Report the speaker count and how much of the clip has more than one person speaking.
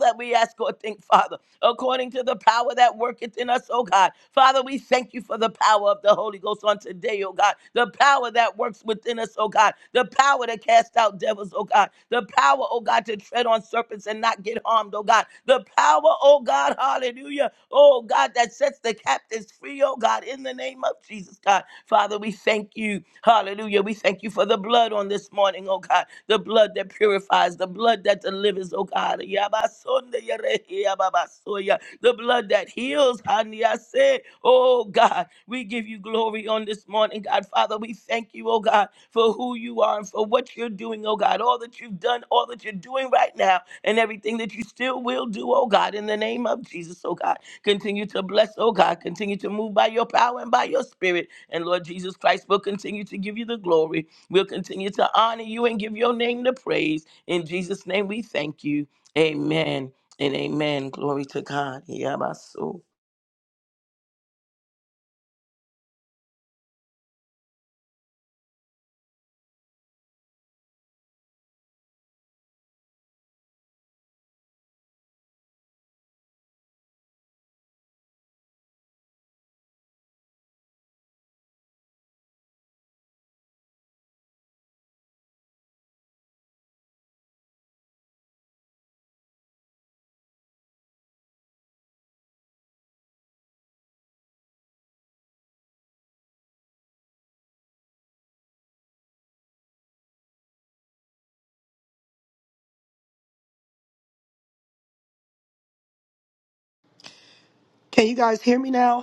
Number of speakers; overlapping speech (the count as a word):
two, no overlap